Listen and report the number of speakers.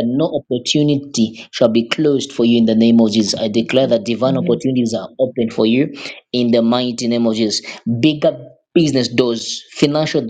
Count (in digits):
1